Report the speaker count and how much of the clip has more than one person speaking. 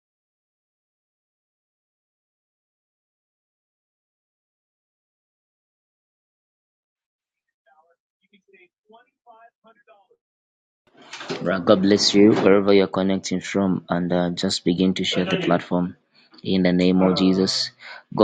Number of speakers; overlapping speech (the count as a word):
one, no overlap